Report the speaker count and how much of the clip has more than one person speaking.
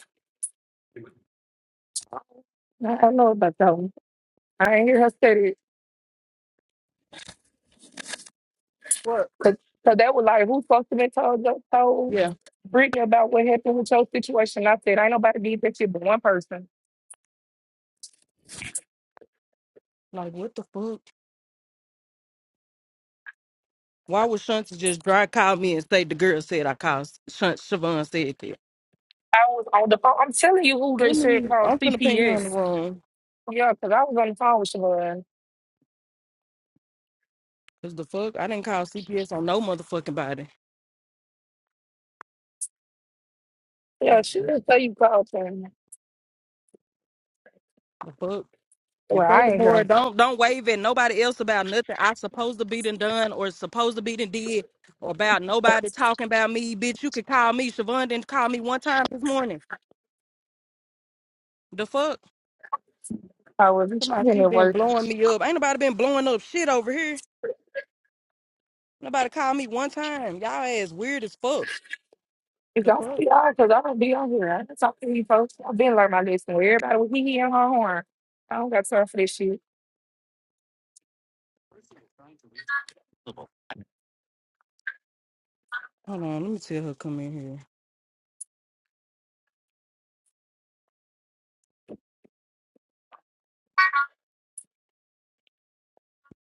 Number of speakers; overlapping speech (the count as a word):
two, about 3%